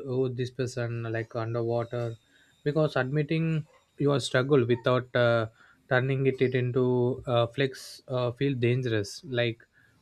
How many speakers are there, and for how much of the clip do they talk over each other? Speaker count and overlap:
1, no overlap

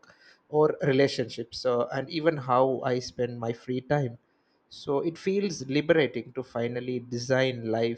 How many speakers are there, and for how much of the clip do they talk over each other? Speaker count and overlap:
1, no overlap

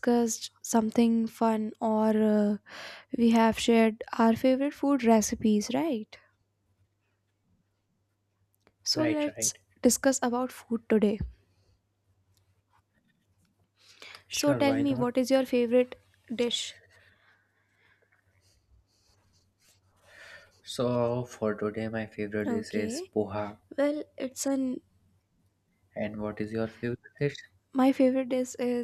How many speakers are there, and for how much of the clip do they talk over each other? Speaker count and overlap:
2, about 7%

